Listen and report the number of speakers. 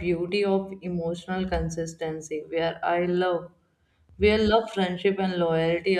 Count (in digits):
1